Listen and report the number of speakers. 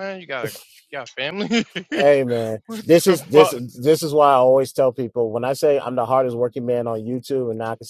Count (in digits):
2